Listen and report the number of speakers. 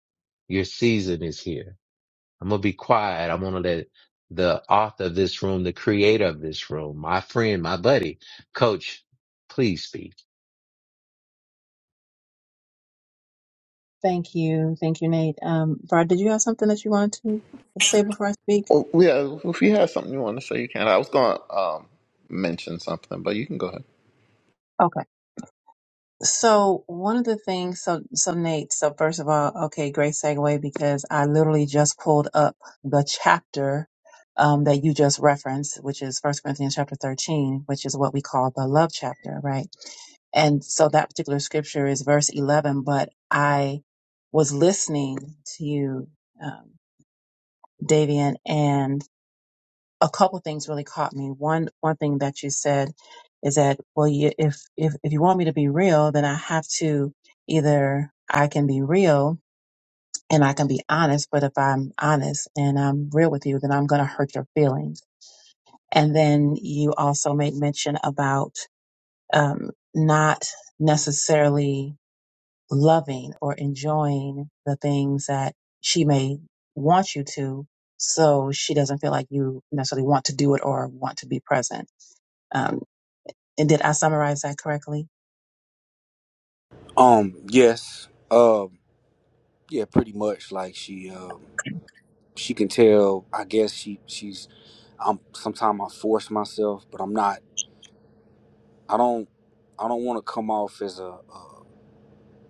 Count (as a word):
four